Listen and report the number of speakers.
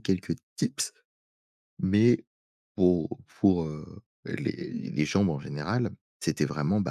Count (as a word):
one